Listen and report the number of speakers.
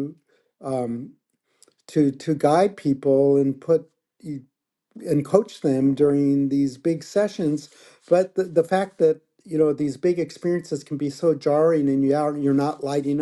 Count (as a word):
one